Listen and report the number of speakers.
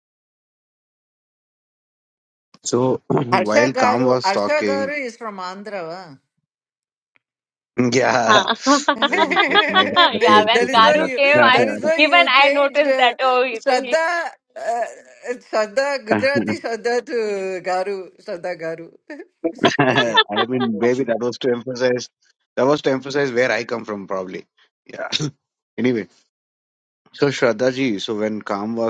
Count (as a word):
three